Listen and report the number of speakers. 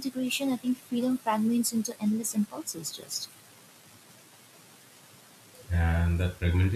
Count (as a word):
two